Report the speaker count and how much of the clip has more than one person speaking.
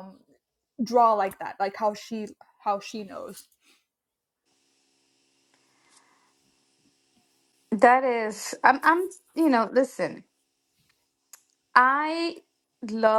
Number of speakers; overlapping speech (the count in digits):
2, no overlap